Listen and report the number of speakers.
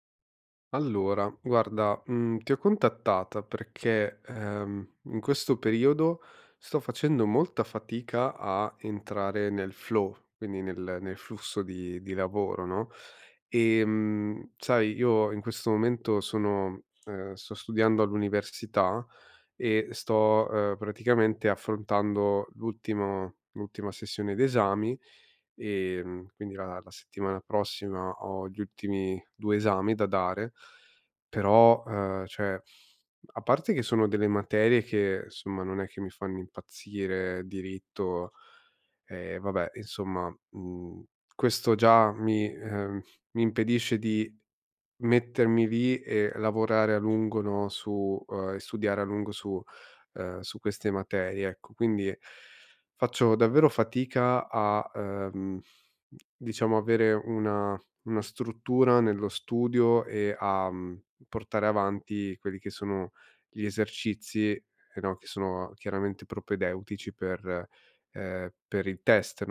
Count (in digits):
1